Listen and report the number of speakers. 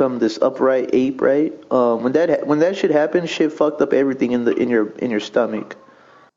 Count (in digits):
1